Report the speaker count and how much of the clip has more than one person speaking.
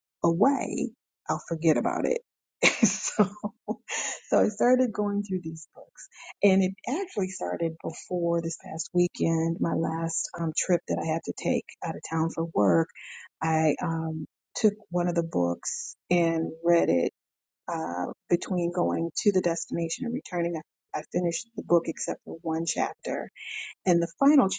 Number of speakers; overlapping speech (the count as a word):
one, no overlap